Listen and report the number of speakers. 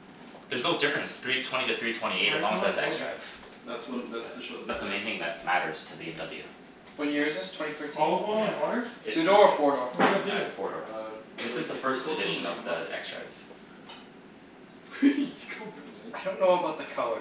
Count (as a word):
four